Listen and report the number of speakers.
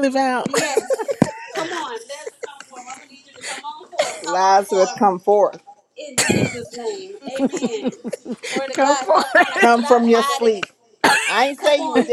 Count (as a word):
three